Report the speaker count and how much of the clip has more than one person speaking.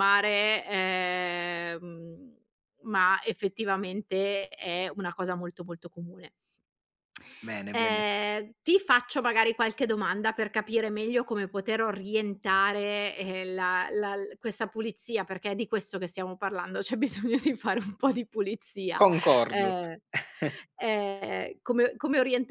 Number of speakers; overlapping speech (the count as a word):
two, about 3%